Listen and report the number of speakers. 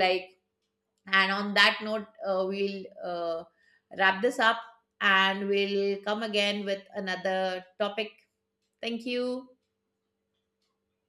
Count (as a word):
one